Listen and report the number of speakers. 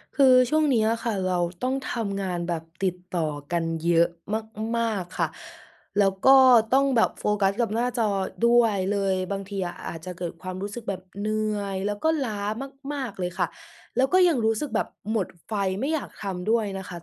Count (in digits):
1